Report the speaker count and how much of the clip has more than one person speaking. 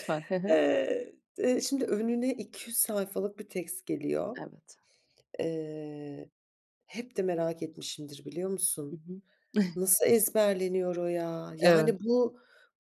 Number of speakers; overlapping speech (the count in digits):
2, about 4%